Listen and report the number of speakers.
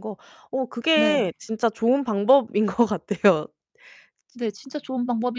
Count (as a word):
two